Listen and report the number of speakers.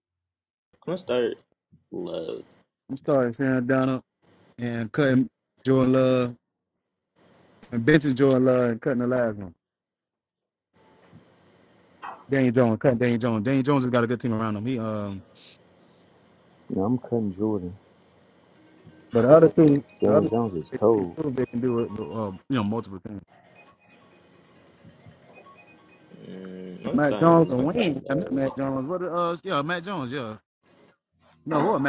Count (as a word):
three